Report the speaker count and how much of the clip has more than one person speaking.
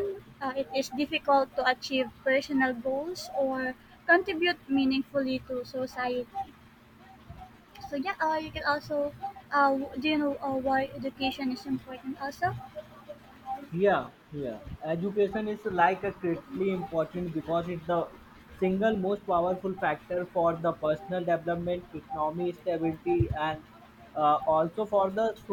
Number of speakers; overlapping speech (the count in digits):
2, no overlap